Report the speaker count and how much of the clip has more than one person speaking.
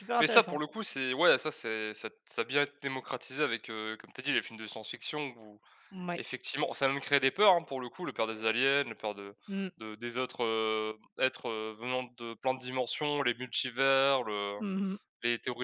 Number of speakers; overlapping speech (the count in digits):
2, about 3%